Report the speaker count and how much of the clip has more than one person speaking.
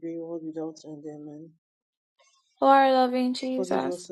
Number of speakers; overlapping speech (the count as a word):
two, about 8%